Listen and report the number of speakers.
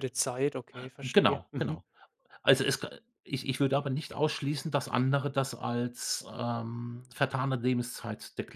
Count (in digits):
2